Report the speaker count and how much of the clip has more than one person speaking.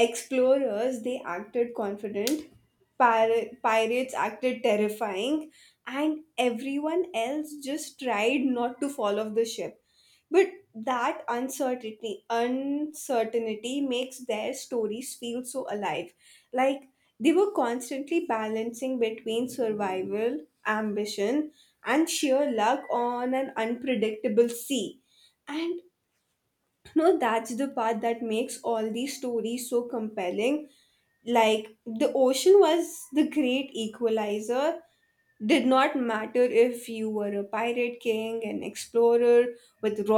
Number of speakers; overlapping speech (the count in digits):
1, no overlap